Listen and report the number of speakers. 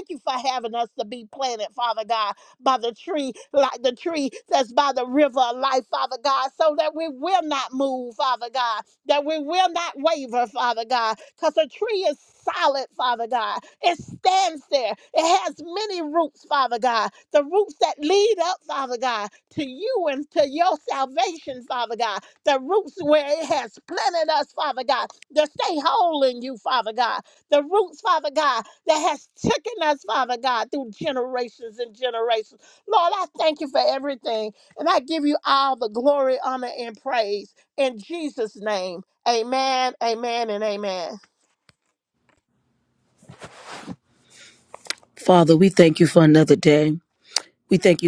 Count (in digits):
2